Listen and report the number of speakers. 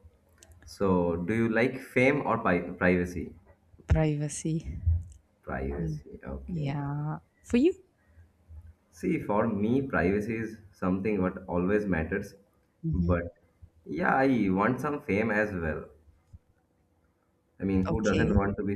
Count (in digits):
2